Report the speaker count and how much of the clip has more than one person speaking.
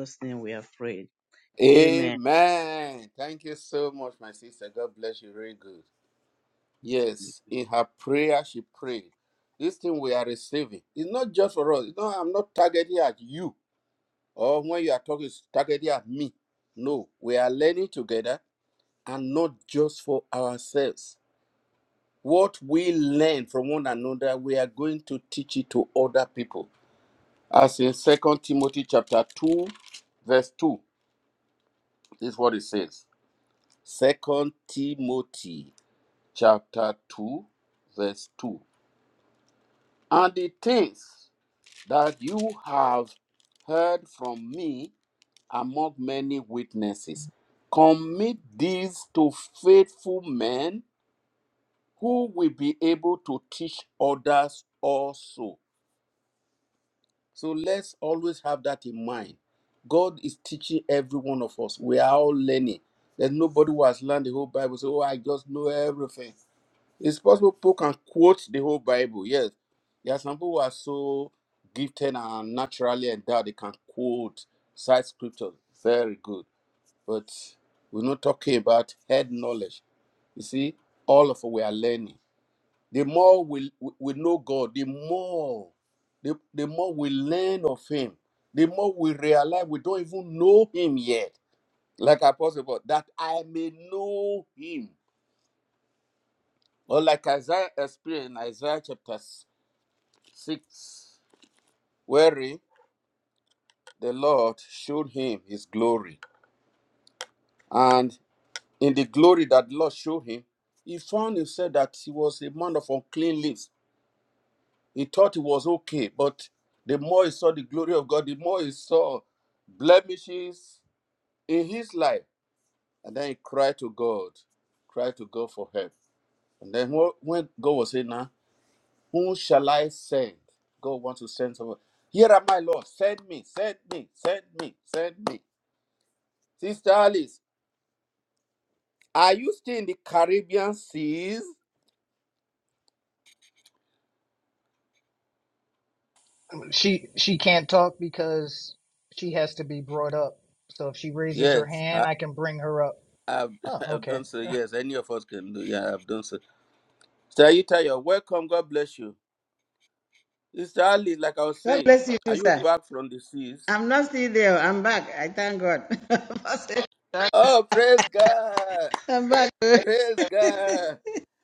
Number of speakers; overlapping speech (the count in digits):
4, about 1%